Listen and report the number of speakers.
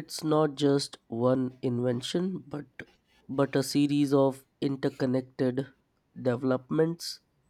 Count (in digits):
1